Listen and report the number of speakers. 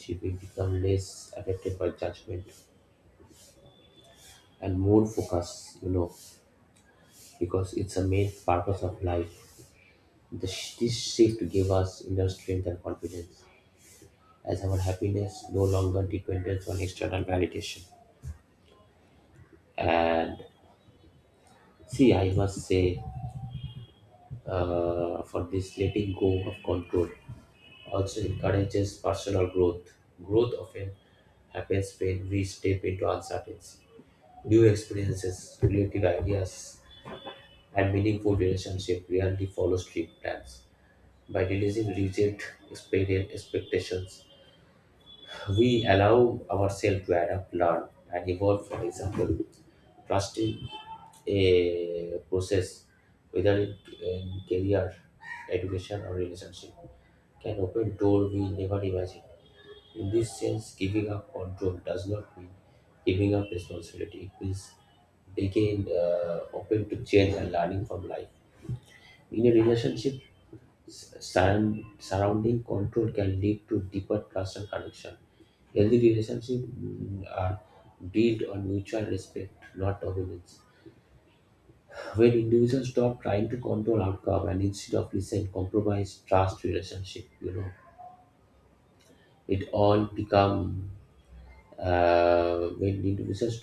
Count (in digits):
1